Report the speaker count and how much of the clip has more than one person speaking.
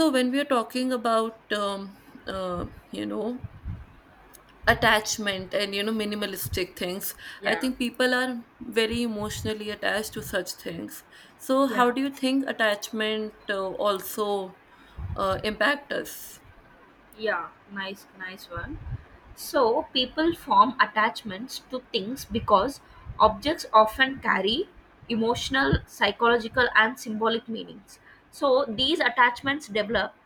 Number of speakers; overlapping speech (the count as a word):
two, about 2%